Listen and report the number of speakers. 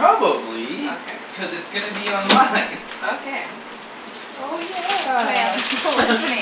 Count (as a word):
three